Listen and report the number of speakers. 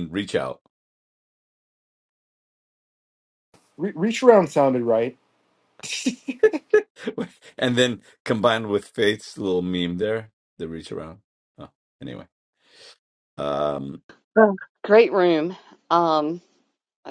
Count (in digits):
3